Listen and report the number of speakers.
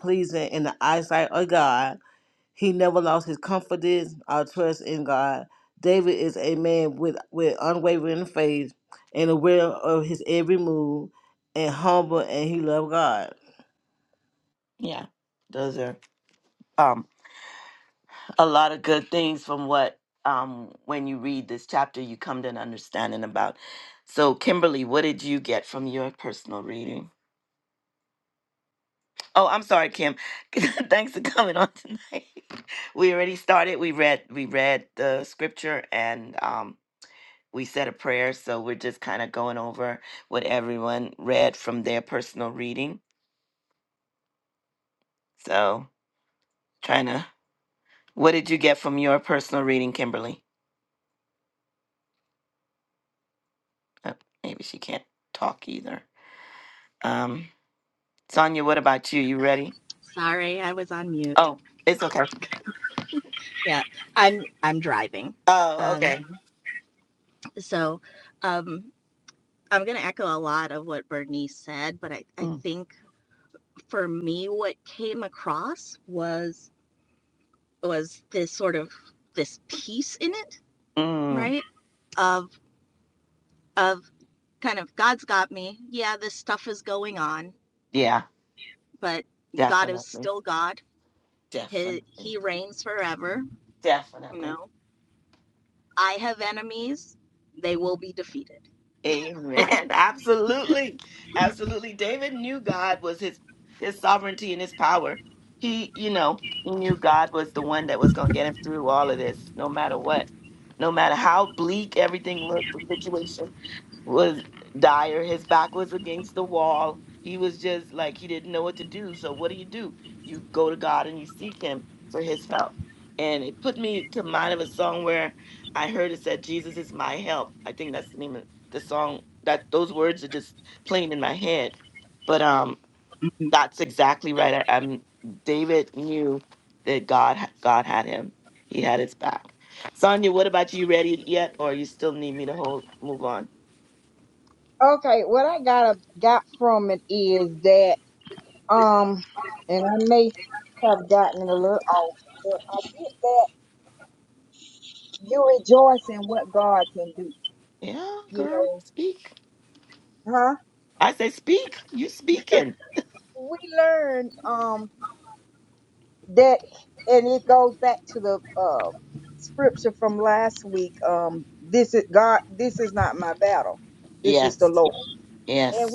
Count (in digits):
4